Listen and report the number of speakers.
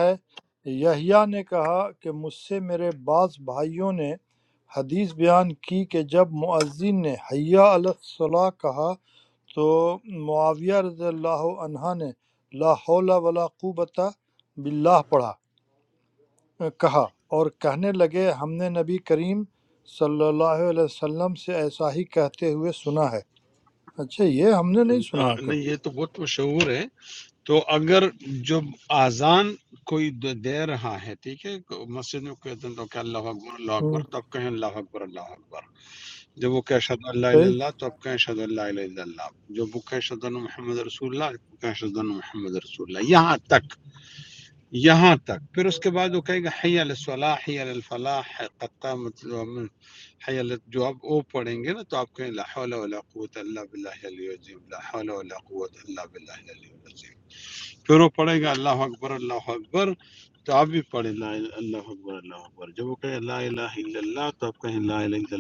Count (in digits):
2